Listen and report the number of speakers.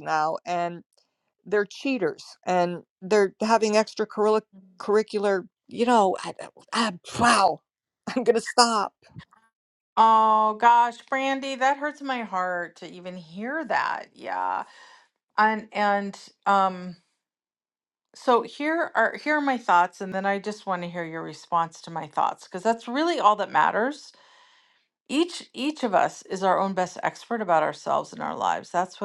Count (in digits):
2